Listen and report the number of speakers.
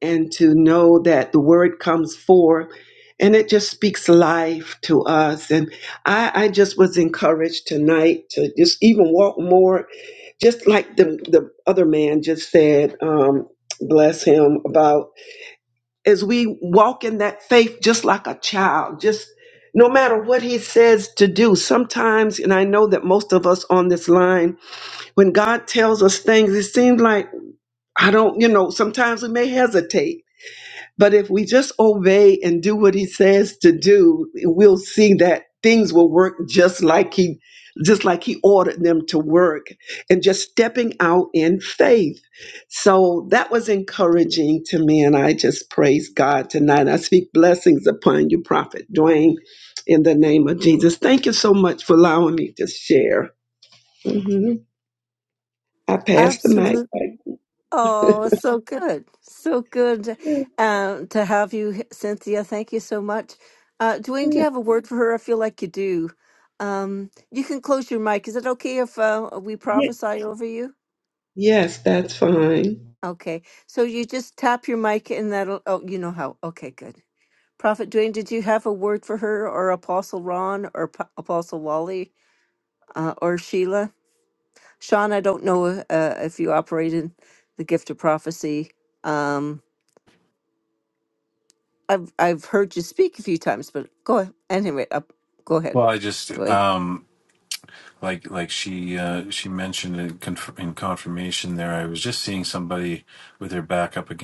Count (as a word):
three